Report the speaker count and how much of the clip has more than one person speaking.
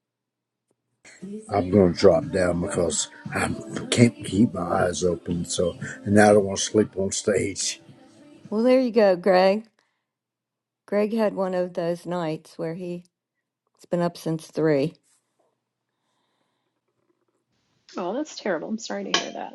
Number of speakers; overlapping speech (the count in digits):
3, no overlap